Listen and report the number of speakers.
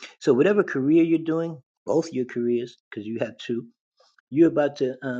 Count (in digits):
1